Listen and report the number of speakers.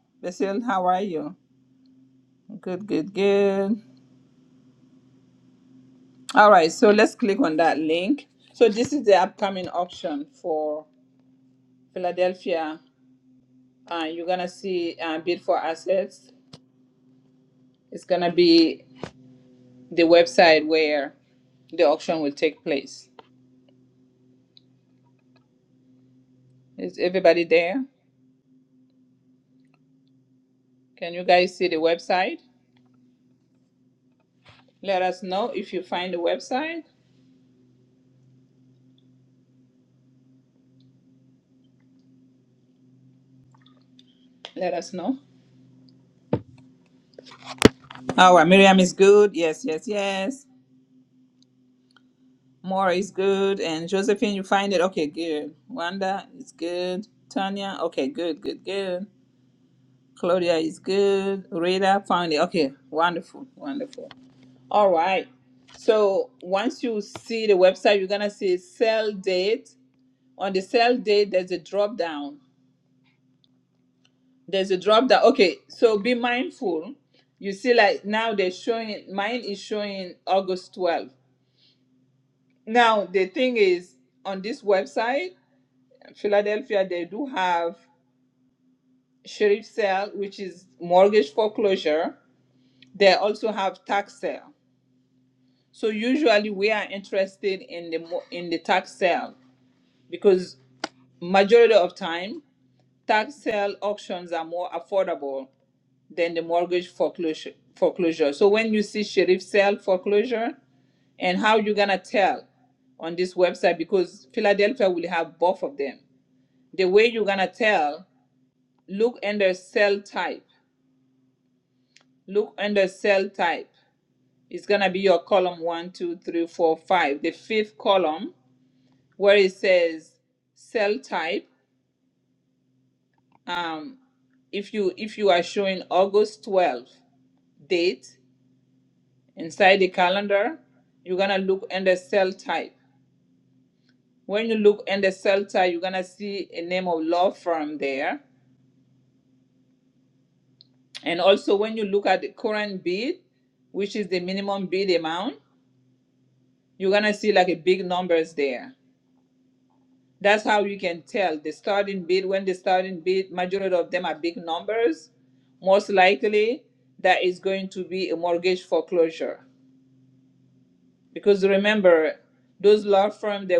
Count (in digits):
1